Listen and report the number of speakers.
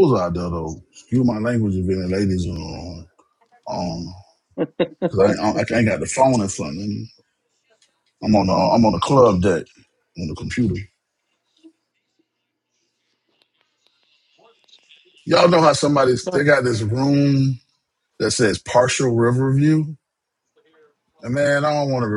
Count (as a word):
one